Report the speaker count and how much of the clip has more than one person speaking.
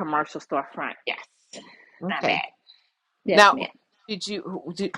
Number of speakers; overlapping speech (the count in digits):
2, about 12%